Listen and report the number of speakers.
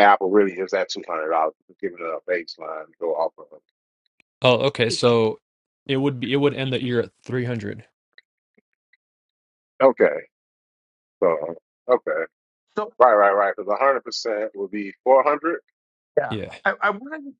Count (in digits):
3